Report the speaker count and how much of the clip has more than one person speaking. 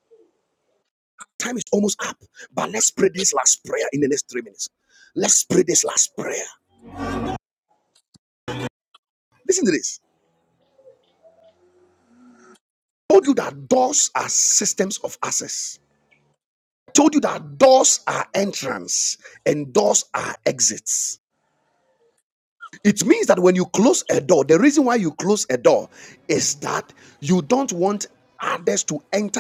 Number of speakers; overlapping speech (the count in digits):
1, no overlap